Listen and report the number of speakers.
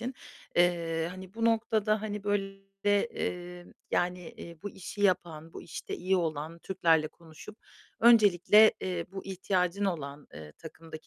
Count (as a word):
one